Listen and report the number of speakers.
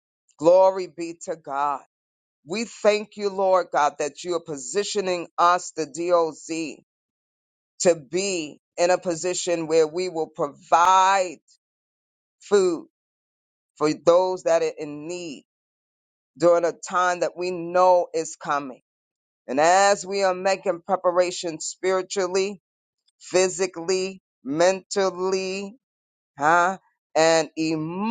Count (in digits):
1